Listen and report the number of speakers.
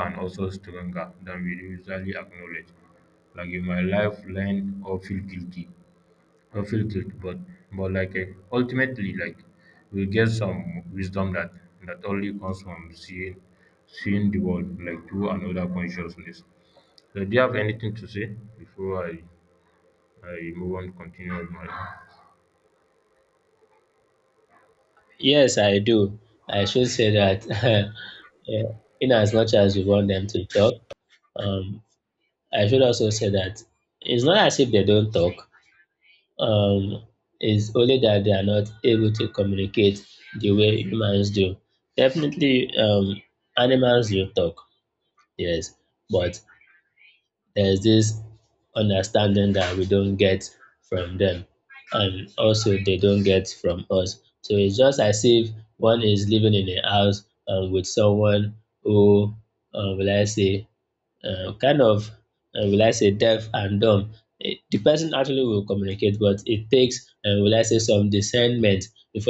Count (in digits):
2